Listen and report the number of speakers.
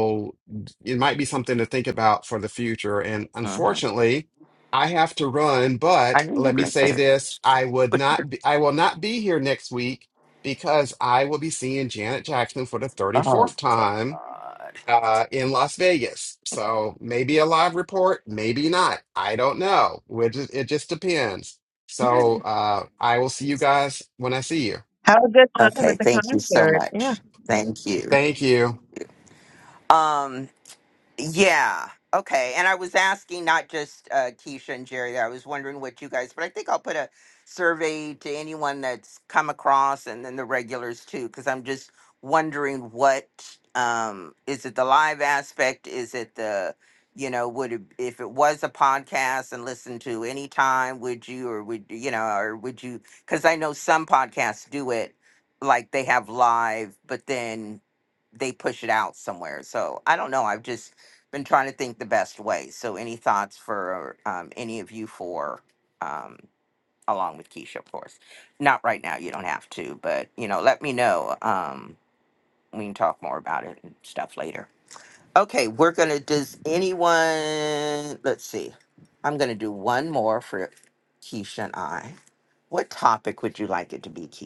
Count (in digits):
3